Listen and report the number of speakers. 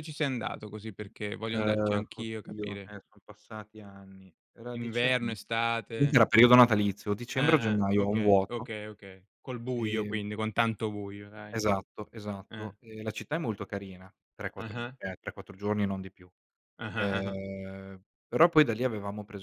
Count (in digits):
2